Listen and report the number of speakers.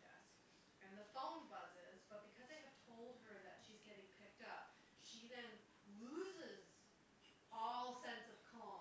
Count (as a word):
one